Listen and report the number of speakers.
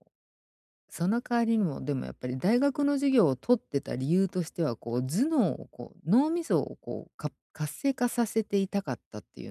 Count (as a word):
one